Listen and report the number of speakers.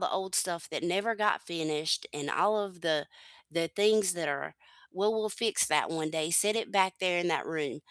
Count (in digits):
1